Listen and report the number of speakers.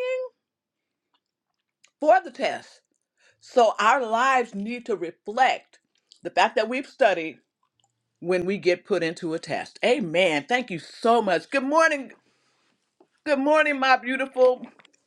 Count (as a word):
one